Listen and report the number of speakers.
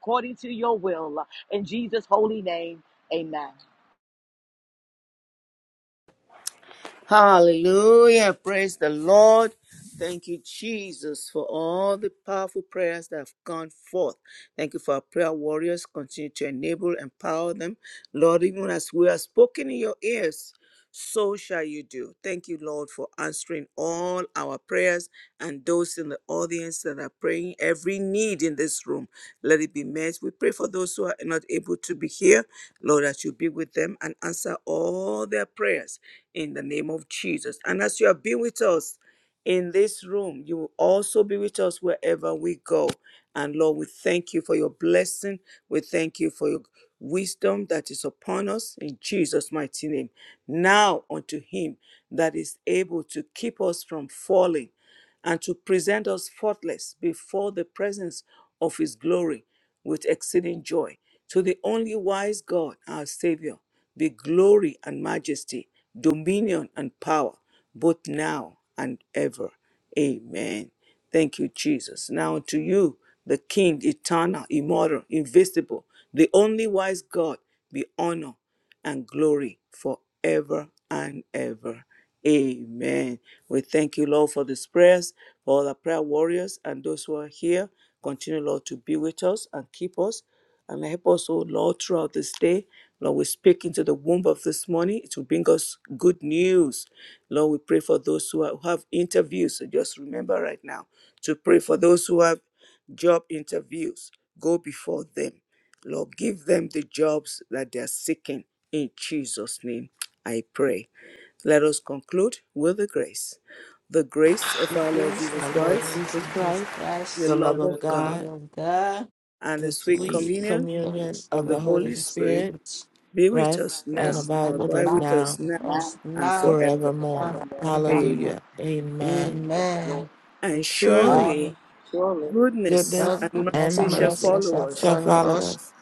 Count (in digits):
4